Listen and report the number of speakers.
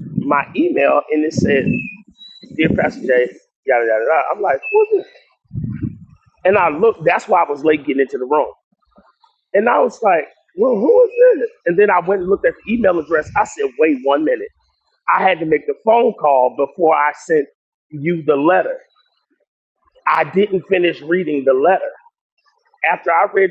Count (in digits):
1